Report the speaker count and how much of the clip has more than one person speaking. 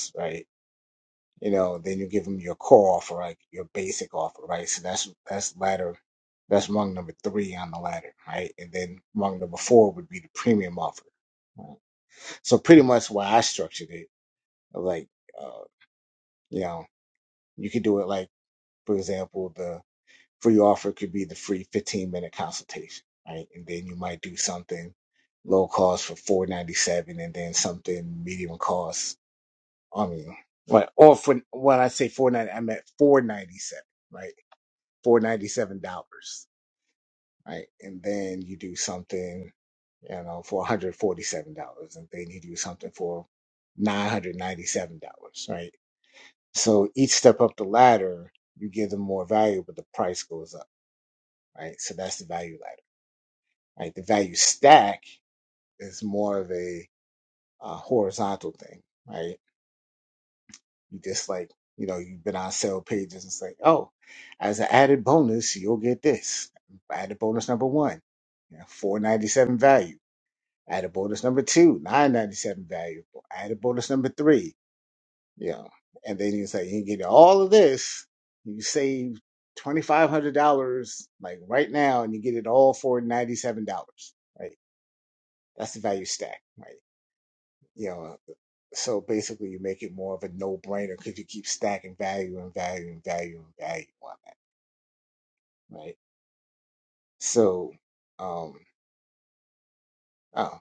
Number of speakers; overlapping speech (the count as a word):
one, no overlap